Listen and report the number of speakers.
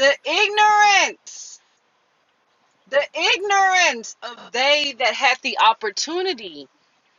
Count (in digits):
1